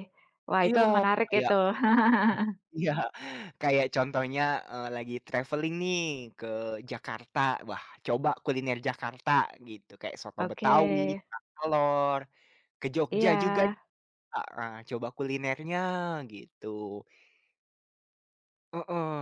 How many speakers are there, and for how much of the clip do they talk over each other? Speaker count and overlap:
2, about 8%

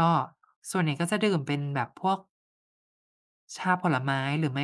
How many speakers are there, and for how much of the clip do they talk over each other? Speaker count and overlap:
1, no overlap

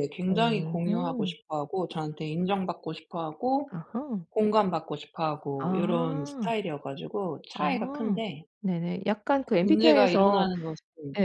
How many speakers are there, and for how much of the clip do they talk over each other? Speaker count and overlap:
2, about 31%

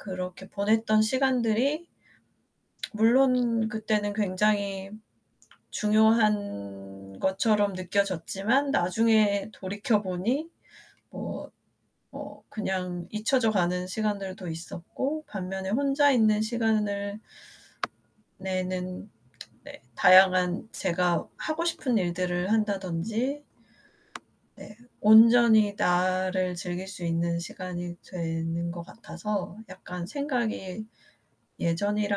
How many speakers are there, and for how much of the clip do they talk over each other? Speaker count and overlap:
1, no overlap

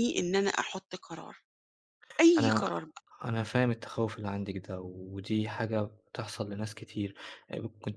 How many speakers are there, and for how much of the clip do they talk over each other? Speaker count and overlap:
2, about 5%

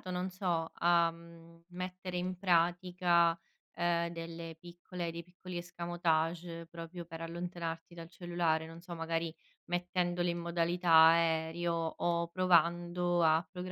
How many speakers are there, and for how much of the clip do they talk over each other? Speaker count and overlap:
1, no overlap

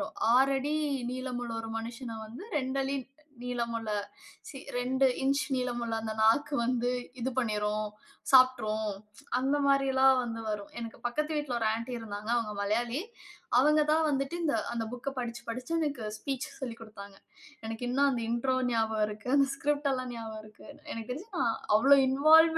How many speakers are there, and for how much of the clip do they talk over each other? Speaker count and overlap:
1, no overlap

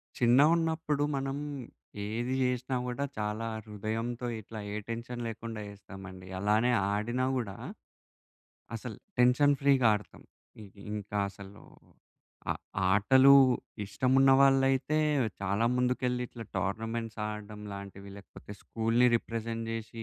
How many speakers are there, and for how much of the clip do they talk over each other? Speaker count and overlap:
1, no overlap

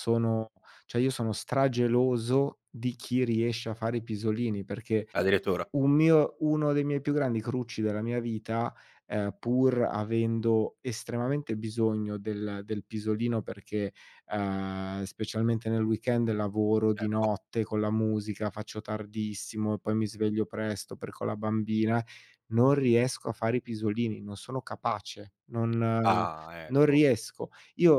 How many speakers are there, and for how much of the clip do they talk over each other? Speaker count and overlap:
2, about 2%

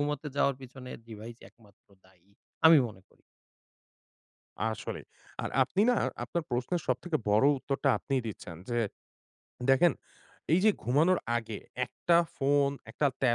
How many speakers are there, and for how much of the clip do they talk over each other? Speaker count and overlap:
2, no overlap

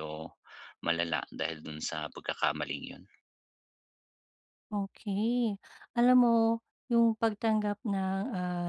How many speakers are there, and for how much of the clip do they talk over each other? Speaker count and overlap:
2, no overlap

